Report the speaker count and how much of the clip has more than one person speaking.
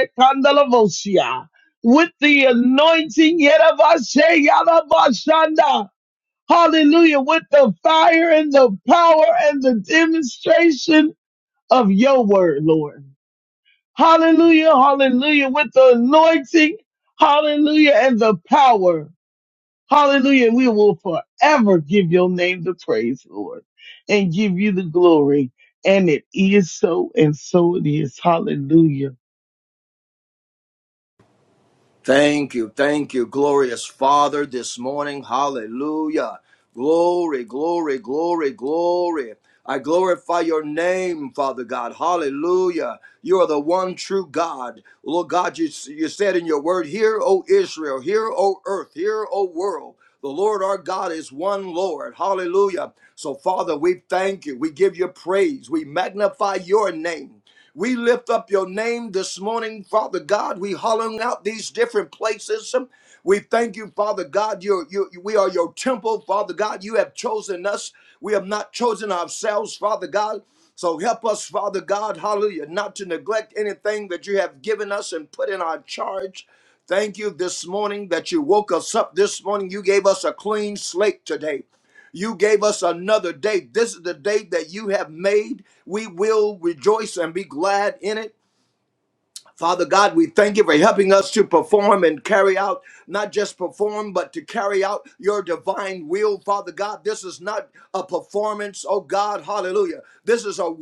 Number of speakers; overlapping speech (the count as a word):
two, no overlap